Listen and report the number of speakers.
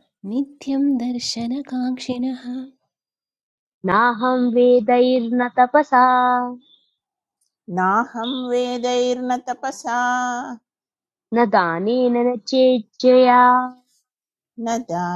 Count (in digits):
3